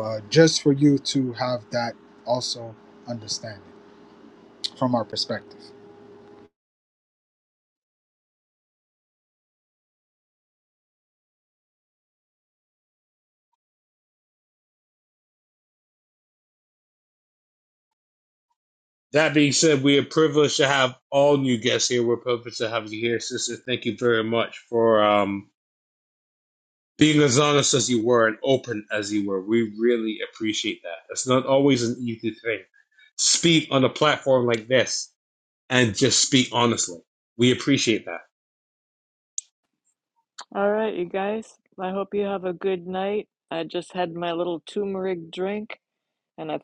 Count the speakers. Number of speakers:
3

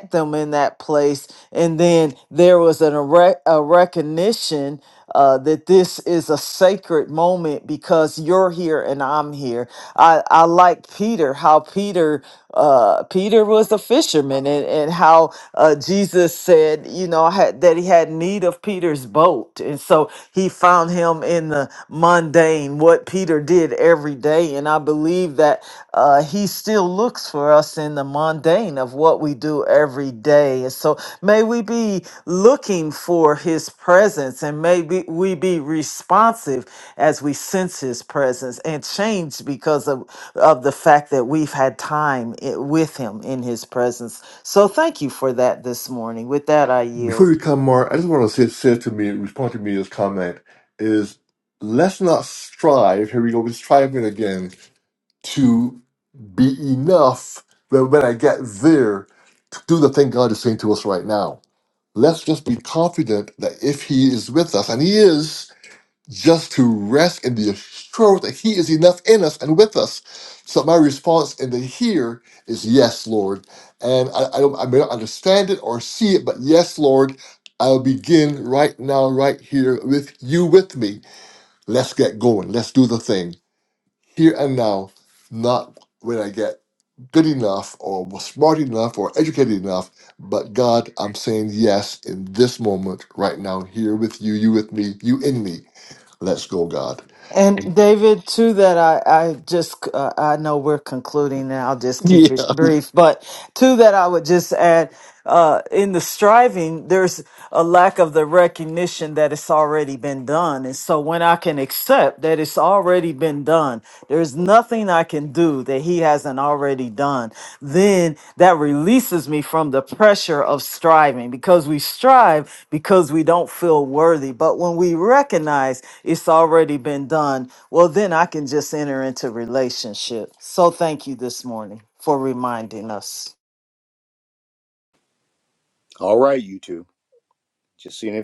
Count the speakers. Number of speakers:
3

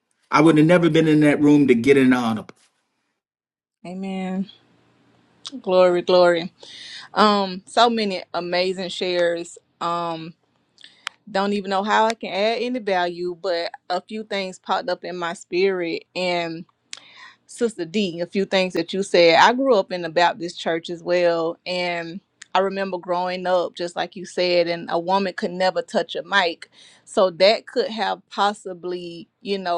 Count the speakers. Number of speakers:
2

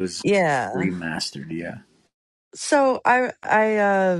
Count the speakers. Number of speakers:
2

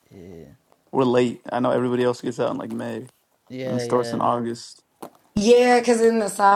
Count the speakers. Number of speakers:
3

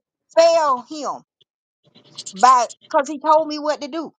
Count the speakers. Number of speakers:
1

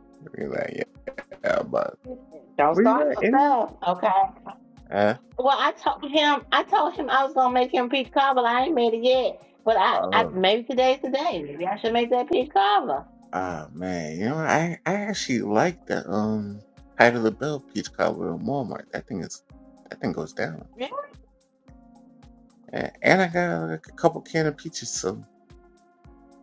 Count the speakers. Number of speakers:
2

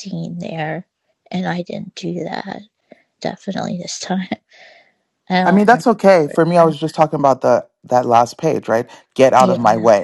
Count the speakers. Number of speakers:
2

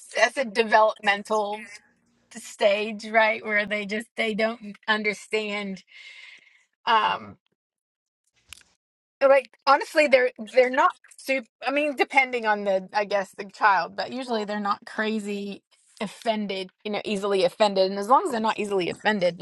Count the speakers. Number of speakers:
1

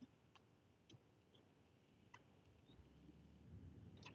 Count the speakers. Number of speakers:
0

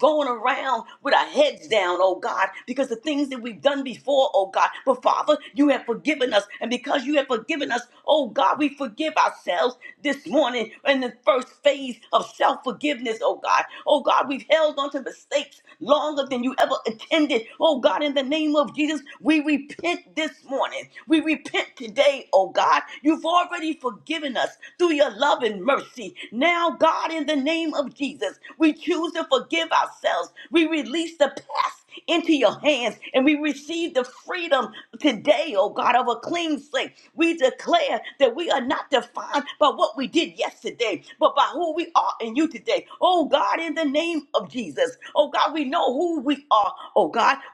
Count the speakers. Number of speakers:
1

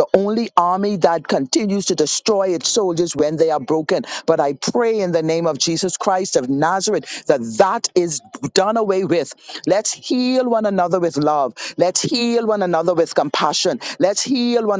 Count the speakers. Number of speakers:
1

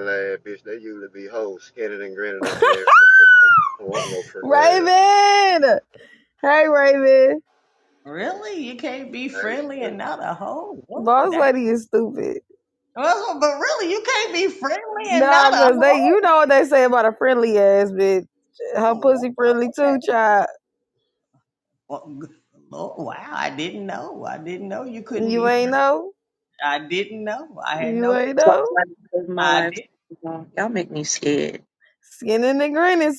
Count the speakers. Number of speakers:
4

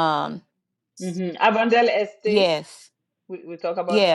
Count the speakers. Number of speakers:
2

